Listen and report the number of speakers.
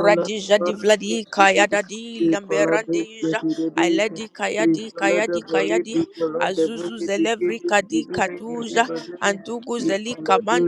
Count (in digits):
2